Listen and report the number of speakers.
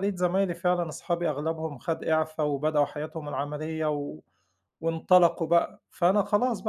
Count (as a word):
one